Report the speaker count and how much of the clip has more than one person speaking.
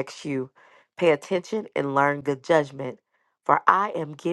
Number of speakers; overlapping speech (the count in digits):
1, no overlap